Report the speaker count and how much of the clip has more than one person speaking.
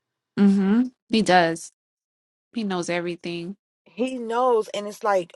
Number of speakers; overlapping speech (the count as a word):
two, no overlap